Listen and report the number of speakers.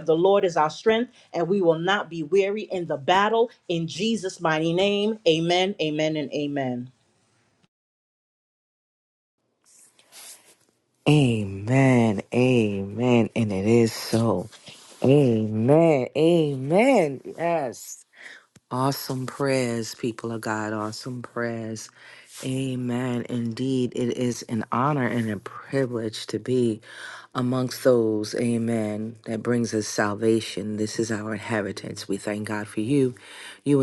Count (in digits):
2